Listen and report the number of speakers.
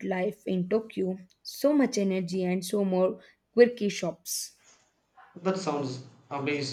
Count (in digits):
2